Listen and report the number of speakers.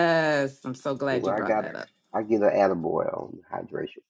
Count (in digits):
2